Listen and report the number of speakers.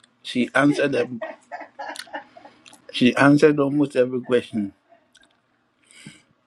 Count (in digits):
1